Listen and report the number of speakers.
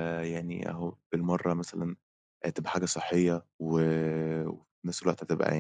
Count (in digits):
1